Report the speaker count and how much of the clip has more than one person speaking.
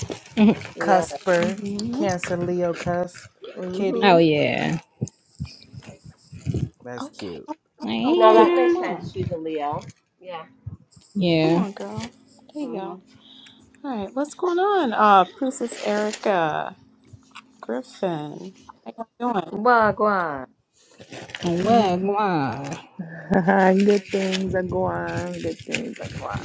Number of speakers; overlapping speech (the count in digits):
6, about 14%